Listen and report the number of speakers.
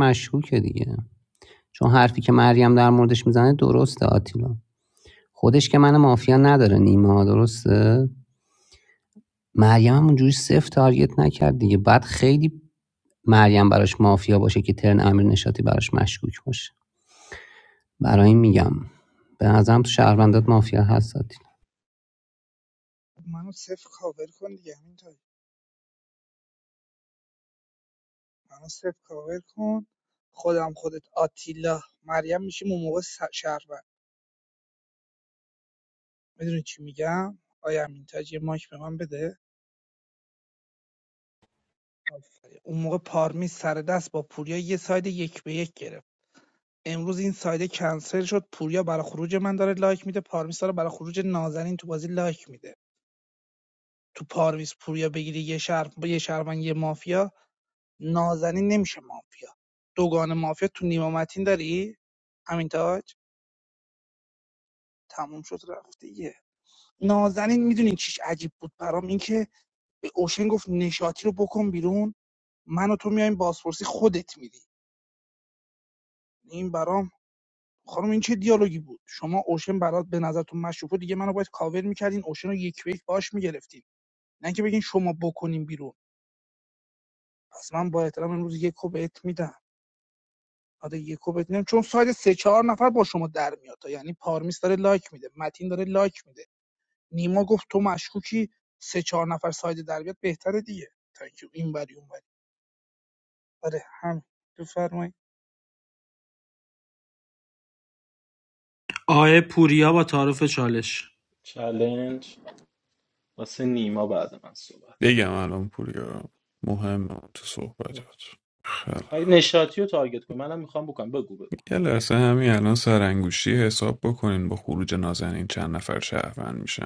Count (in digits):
5